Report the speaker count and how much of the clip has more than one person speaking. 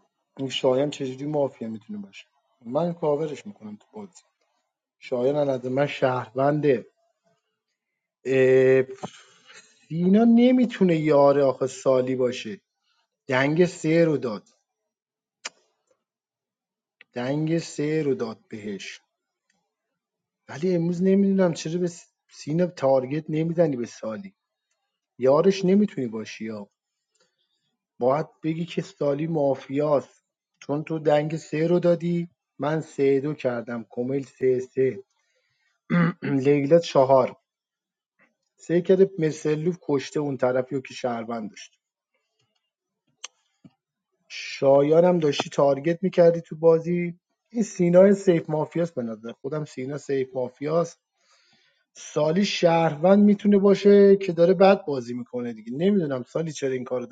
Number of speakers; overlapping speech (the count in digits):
1, no overlap